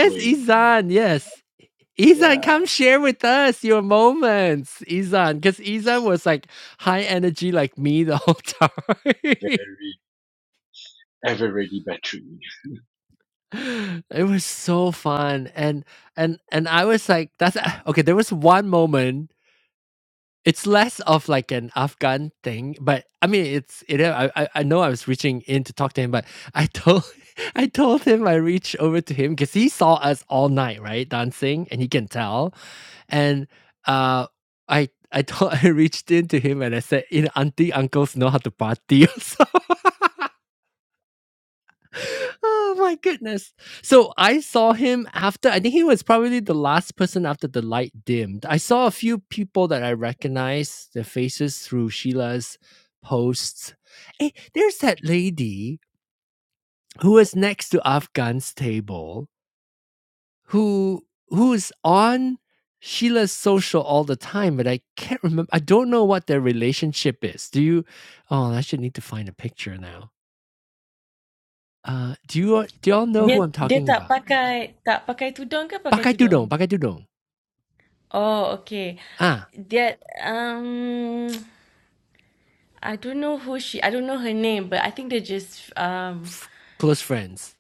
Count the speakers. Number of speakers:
3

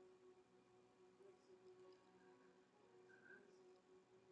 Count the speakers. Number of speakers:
0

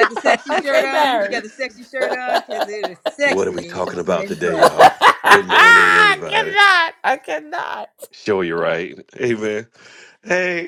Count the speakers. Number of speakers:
3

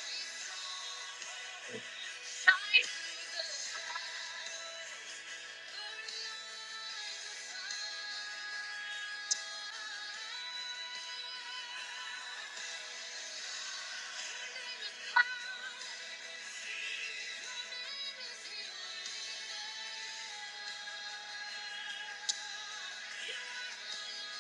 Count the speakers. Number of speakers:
0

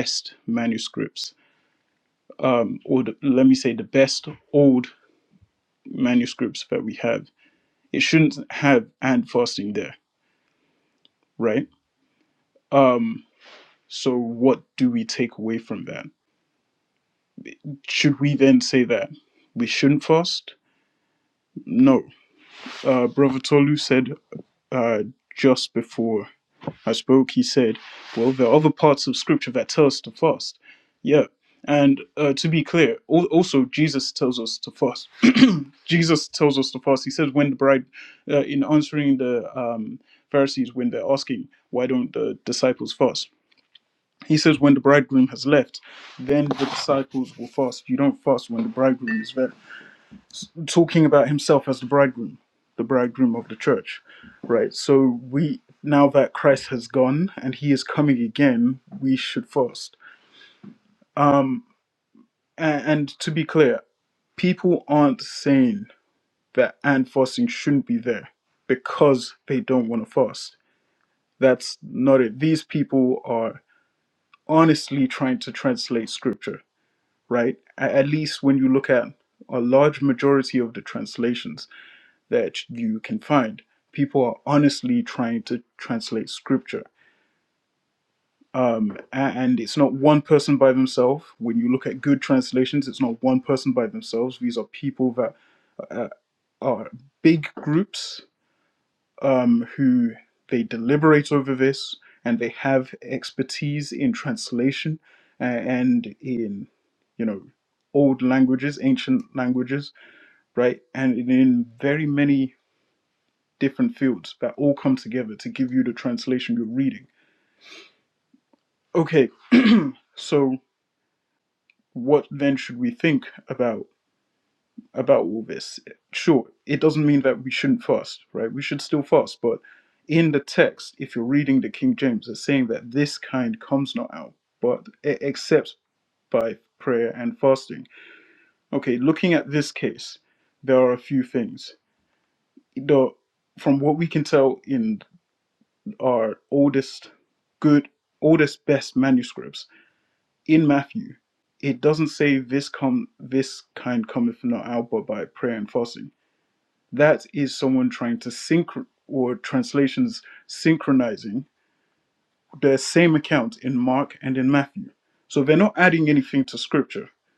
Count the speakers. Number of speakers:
1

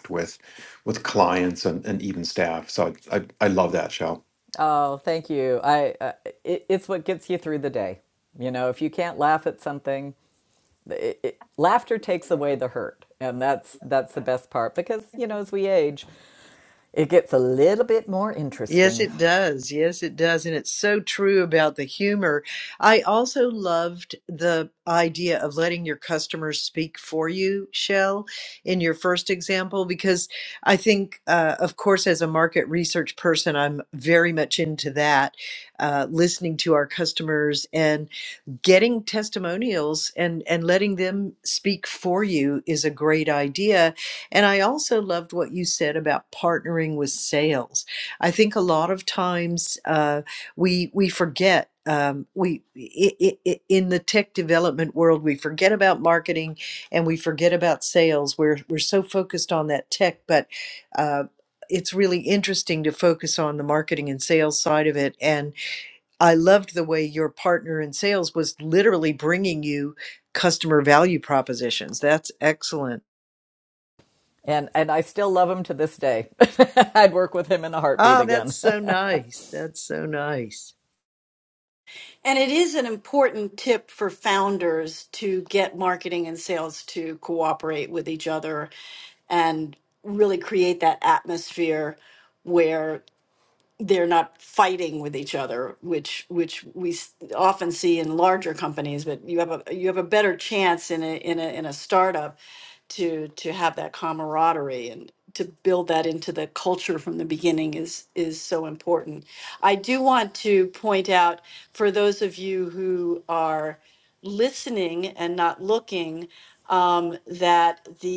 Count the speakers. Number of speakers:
4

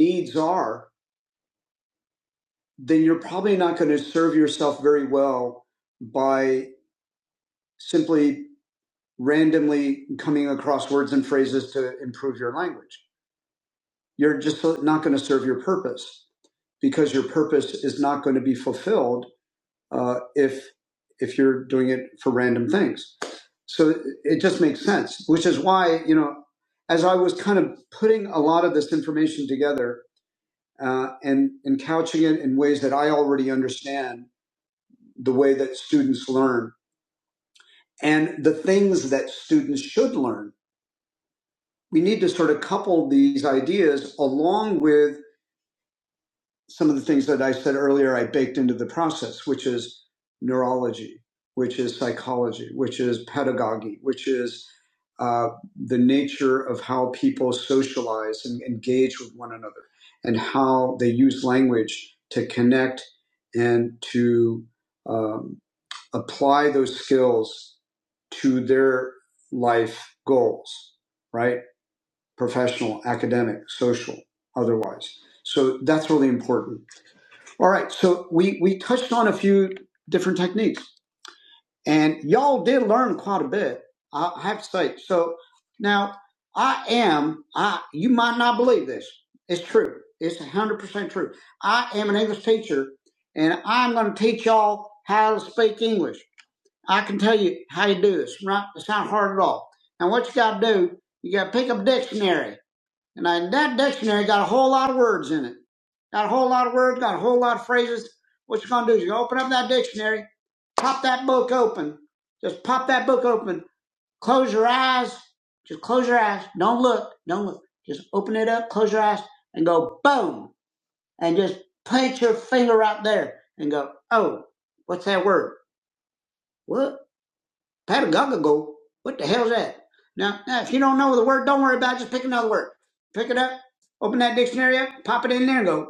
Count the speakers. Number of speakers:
1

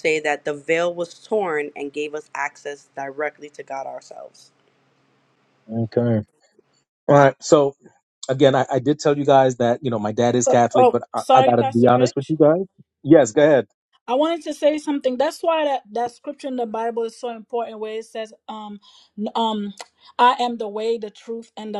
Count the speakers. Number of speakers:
3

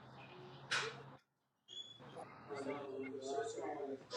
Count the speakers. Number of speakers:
0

